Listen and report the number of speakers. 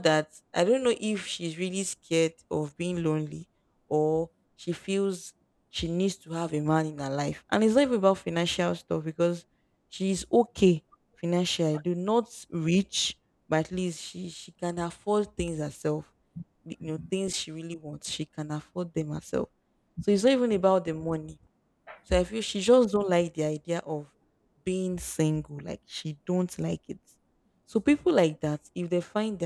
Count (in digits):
1